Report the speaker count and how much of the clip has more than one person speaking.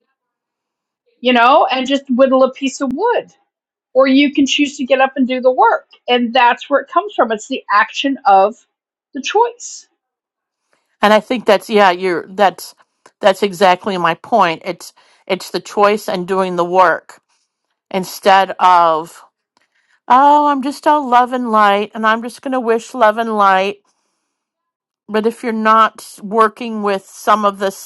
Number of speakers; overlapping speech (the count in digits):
2, no overlap